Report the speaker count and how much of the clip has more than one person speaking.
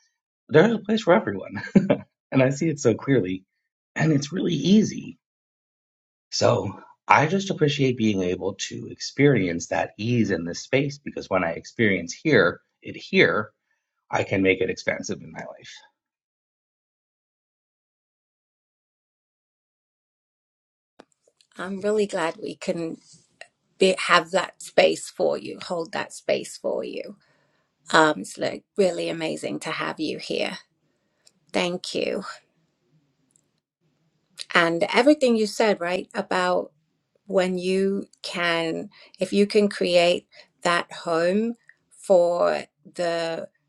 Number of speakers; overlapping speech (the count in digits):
2, no overlap